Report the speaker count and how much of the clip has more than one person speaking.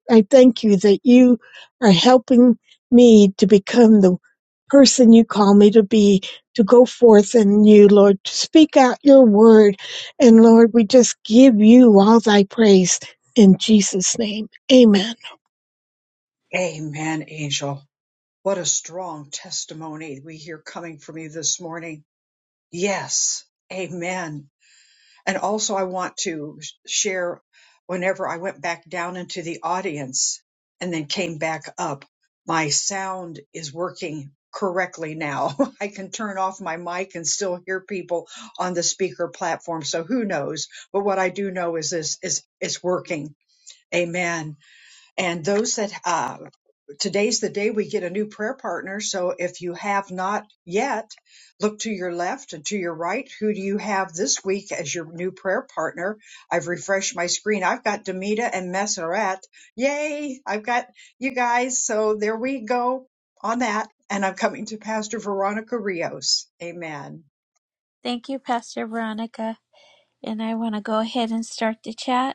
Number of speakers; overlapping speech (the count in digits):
3, no overlap